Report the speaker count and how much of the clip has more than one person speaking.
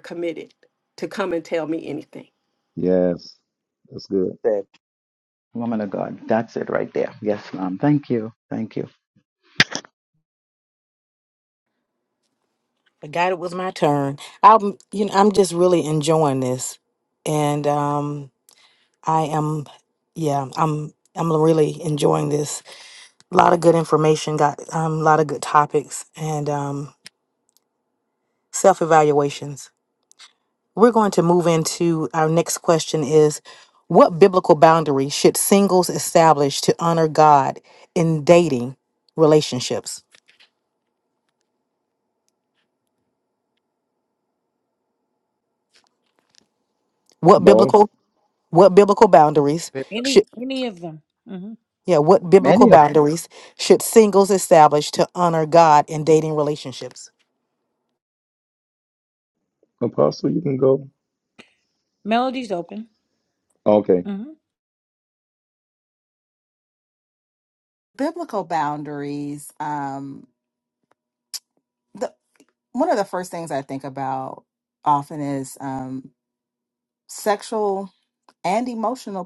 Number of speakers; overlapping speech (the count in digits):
6, about 1%